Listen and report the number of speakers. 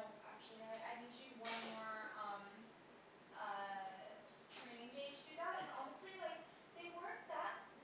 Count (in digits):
1